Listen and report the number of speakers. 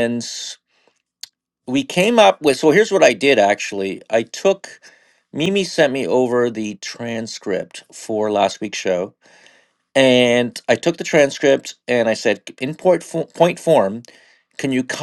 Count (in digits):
1